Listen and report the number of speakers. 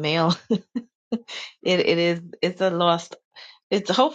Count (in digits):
1